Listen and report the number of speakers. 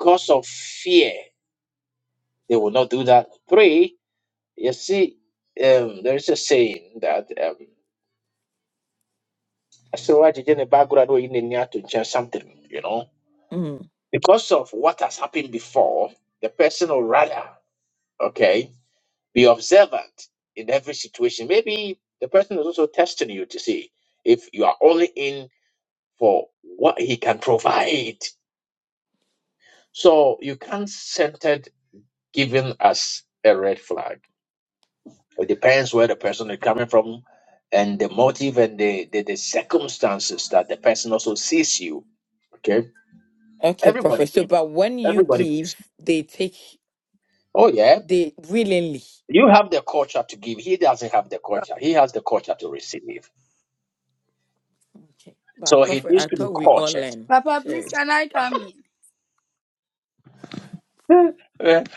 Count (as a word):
three